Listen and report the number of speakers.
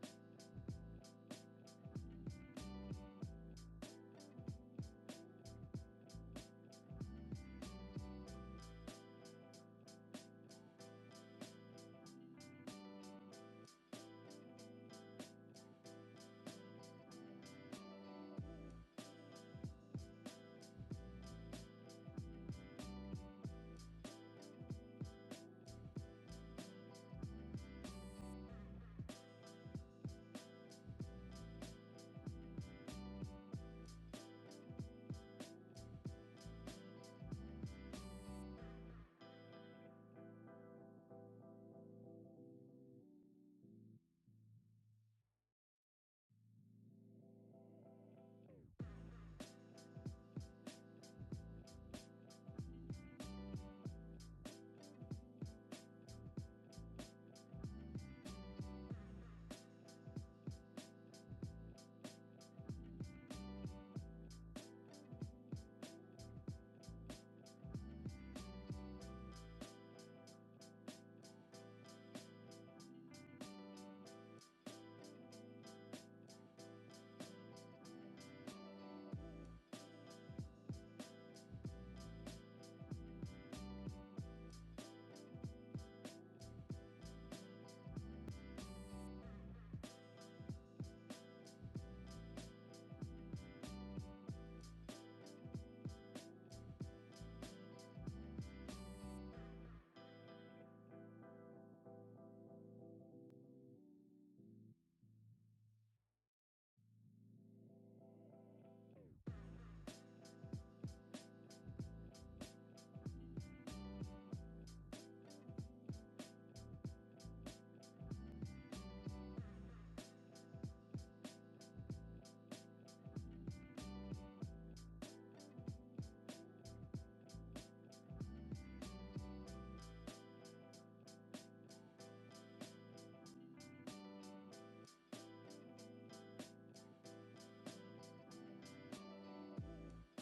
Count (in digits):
0